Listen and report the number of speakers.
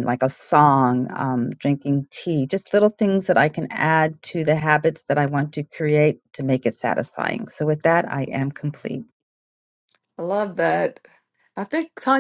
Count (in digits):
2